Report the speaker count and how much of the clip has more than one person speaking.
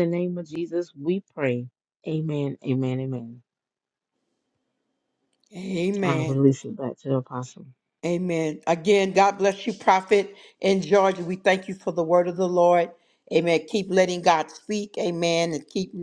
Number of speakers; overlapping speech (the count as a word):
two, about 2%